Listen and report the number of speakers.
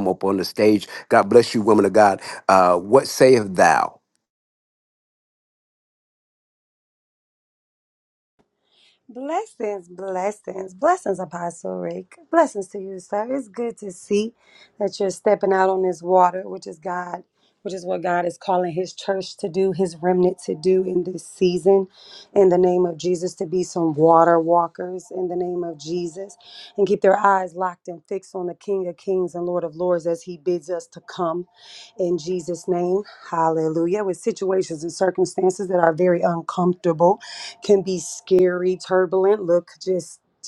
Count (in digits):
2